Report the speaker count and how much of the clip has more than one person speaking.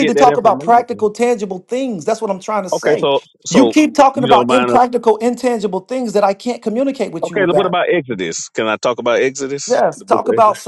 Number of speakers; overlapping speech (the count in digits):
2, about 34%